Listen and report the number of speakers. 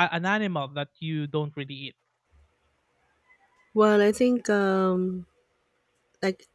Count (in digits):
2